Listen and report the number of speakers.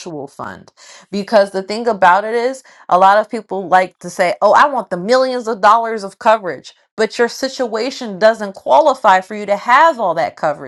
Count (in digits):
1